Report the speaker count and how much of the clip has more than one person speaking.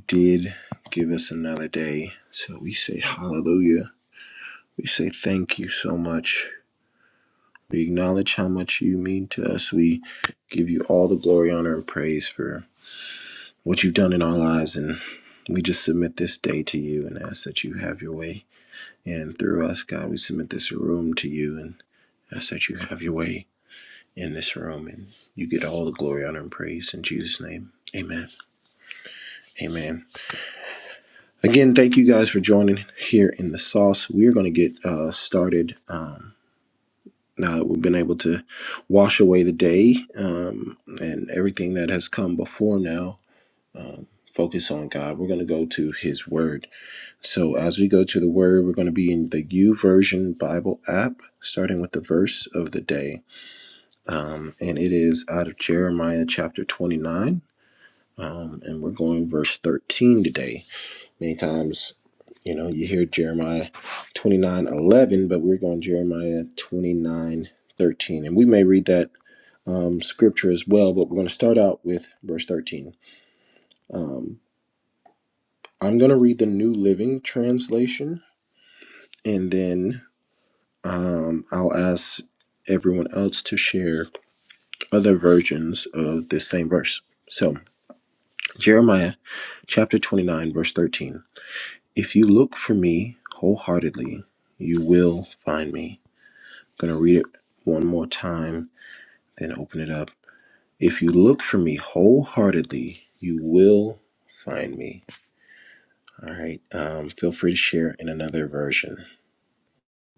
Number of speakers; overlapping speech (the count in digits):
1, no overlap